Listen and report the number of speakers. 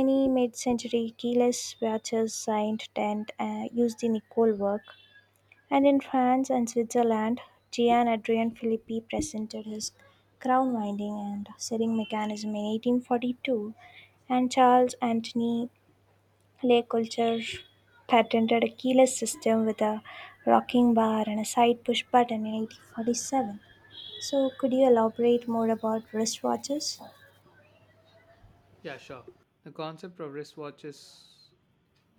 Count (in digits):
2